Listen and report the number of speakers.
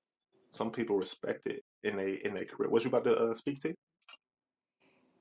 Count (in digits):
1